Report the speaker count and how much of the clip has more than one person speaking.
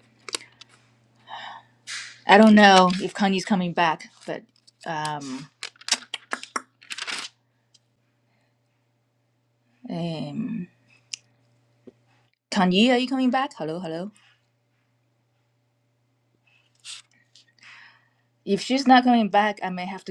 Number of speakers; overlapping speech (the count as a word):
one, no overlap